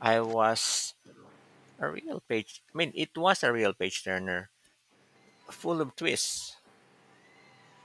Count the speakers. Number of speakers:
1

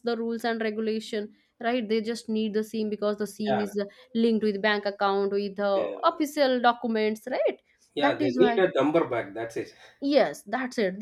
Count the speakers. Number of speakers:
2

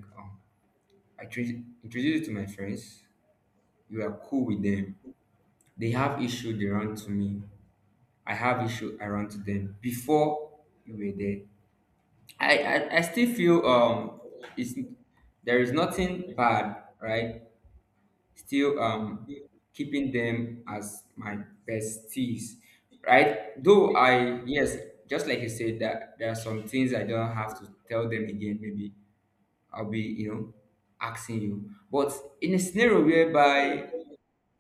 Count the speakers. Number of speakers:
1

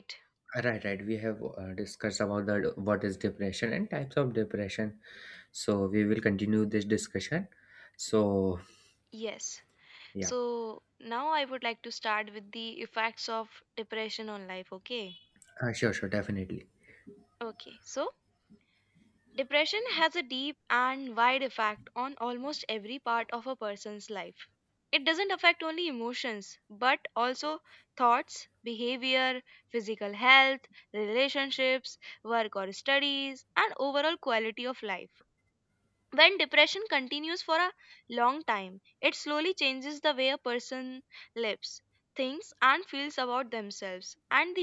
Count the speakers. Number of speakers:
2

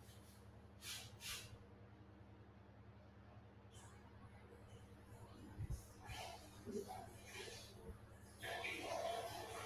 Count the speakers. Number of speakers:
0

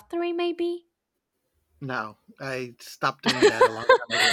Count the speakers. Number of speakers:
2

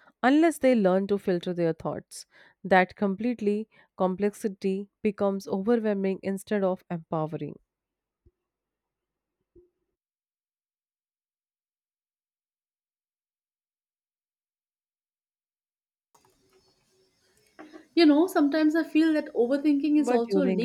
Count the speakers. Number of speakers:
2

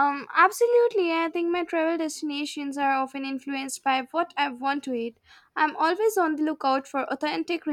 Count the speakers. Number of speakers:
1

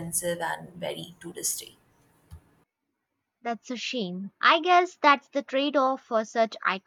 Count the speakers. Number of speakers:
2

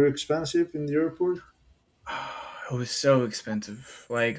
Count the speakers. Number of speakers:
2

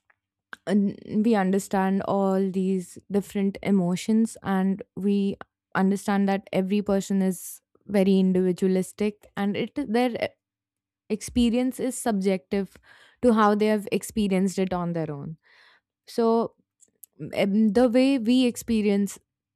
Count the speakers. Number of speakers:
1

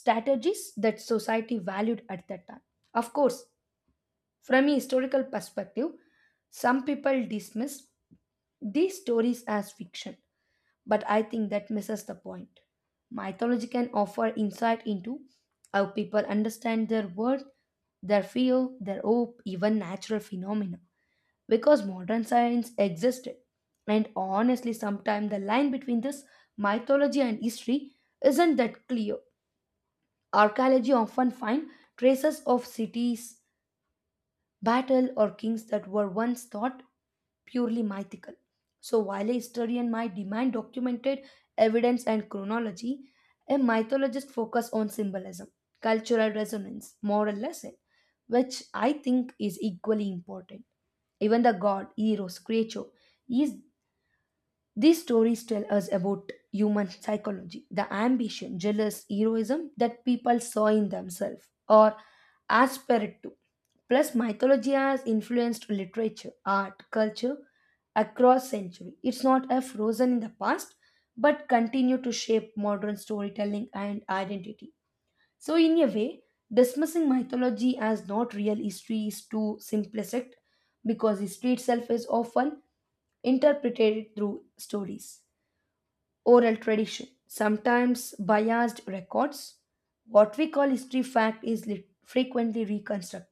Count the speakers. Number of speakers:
1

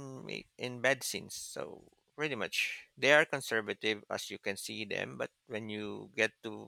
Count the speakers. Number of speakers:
1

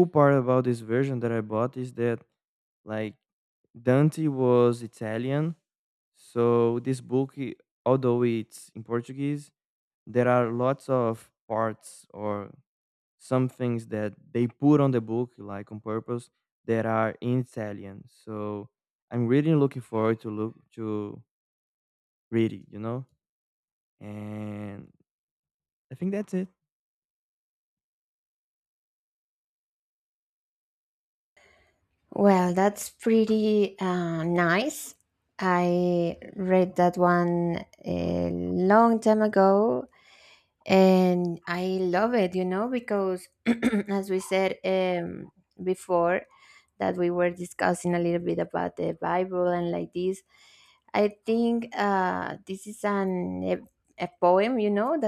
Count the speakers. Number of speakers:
2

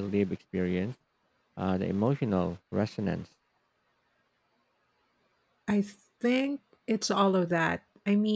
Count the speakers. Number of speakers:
2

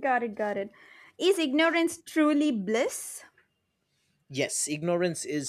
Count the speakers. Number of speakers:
2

